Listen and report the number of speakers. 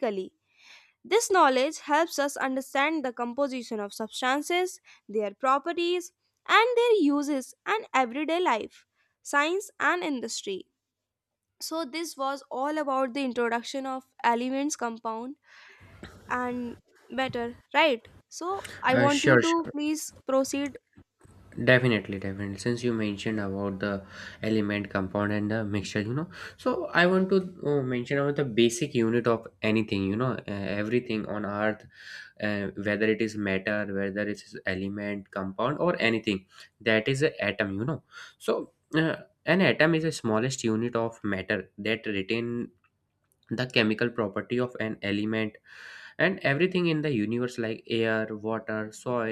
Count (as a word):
two